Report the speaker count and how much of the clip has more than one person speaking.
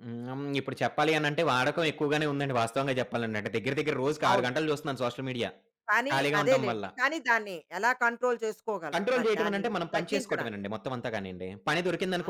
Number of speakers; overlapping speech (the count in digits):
2, about 22%